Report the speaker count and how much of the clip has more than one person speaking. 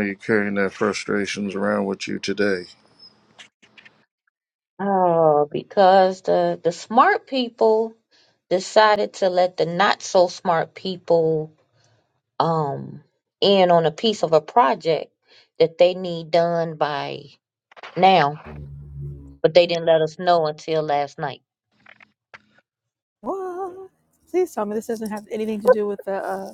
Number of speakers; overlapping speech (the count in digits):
3, no overlap